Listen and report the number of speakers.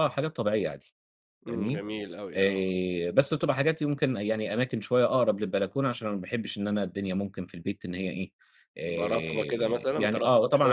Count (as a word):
two